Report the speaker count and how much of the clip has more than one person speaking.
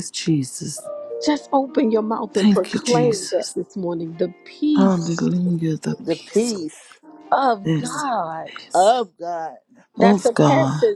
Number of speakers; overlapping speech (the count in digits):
3, about 31%